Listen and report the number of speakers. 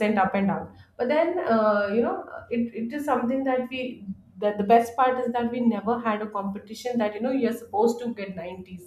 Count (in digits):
1